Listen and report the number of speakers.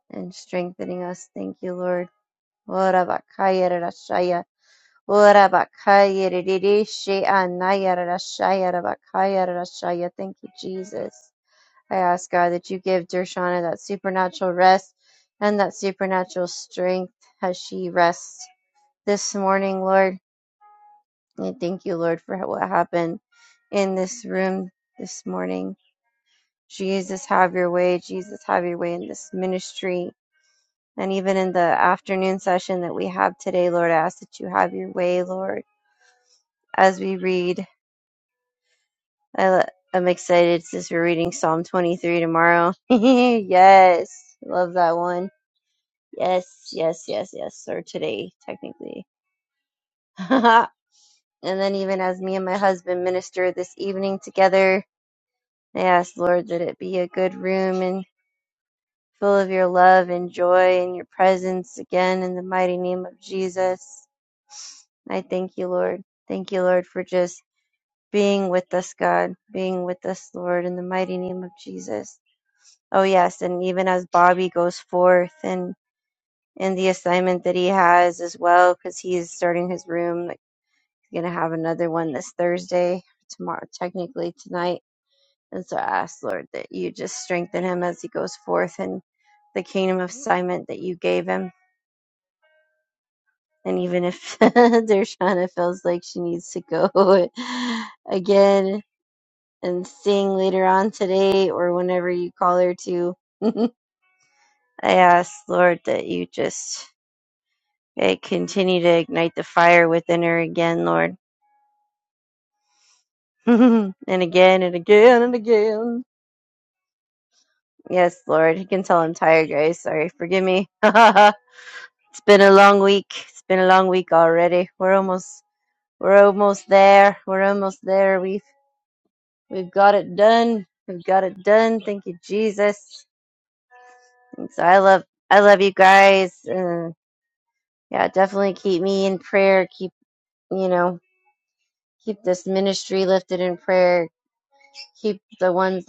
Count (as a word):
one